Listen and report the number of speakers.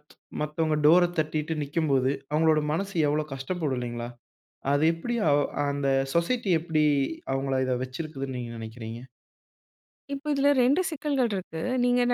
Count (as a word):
two